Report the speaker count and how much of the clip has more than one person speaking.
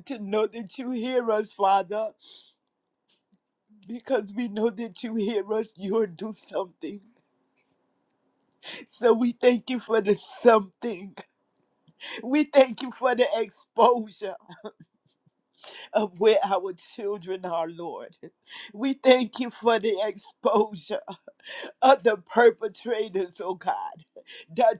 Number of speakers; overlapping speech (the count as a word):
one, no overlap